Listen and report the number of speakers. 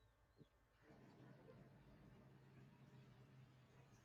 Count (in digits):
0